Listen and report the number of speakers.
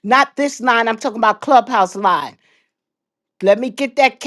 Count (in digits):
1